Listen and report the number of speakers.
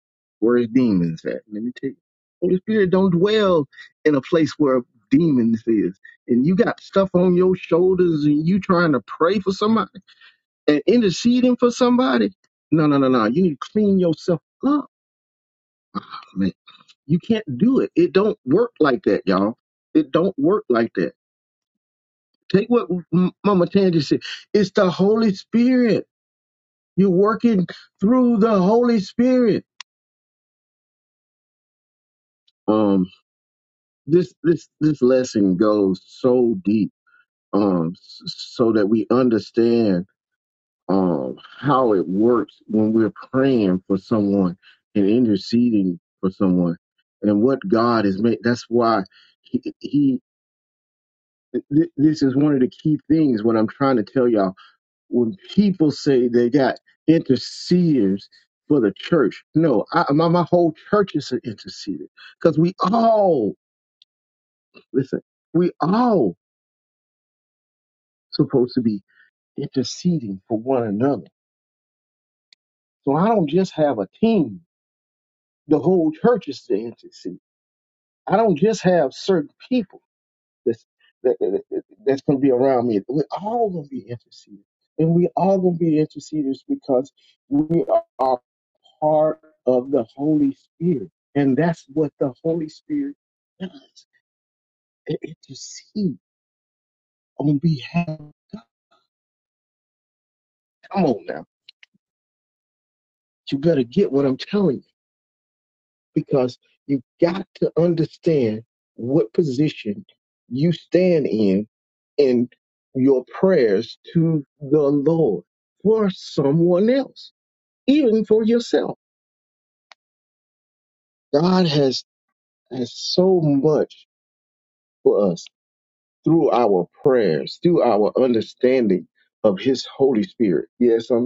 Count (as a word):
one